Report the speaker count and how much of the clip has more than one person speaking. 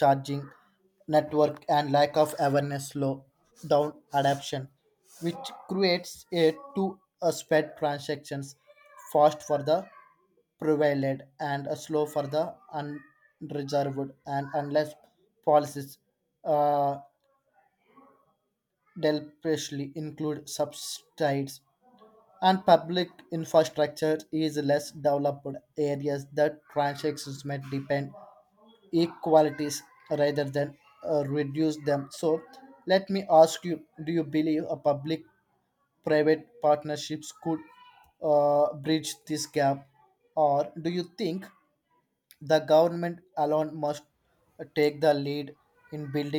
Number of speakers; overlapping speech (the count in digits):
1, no overlap